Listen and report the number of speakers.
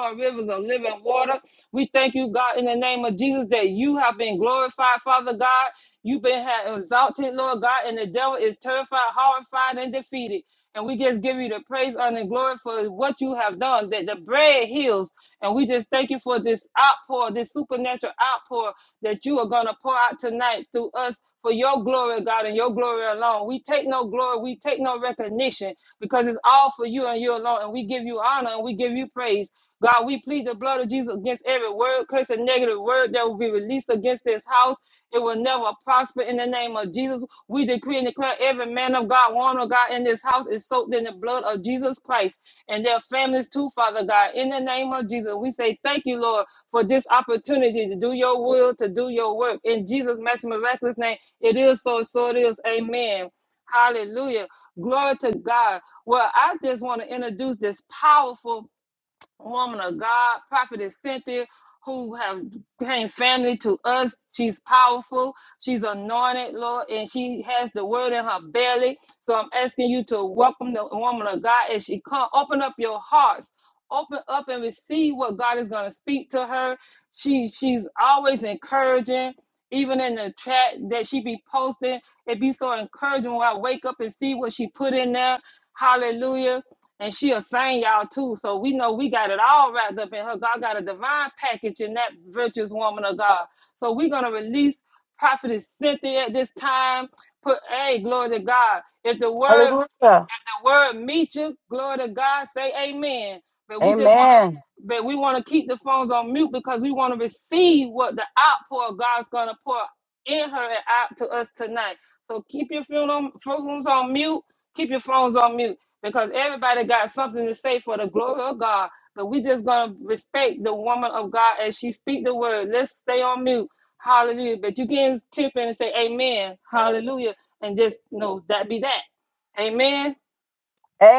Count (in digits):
2